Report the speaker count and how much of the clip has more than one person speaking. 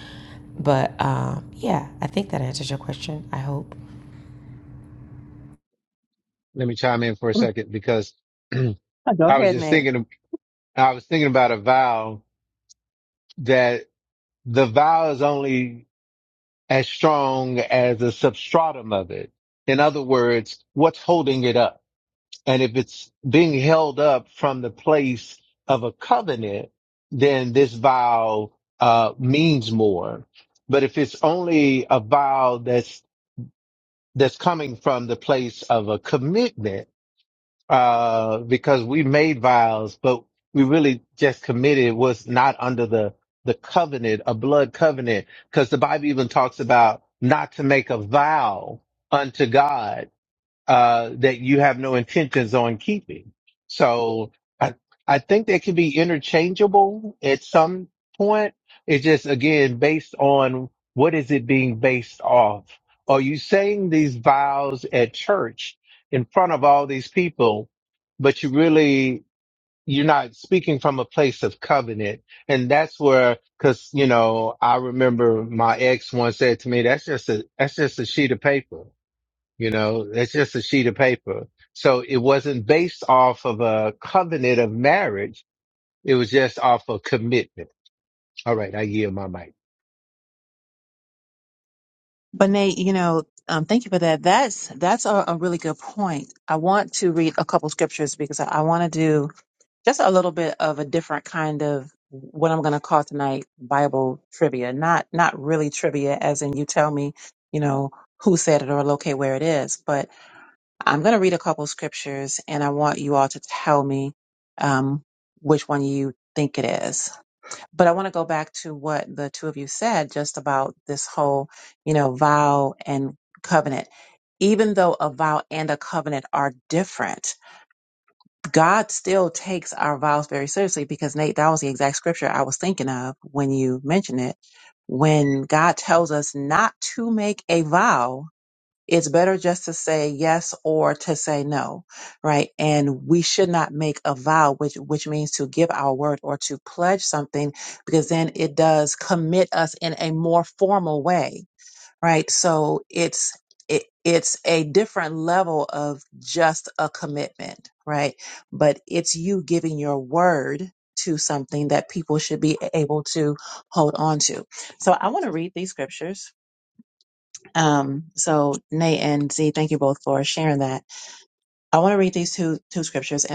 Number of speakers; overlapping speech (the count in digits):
3, under 1%